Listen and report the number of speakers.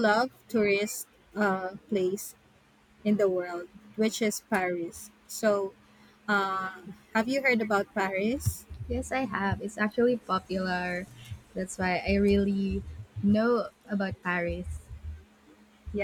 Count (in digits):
2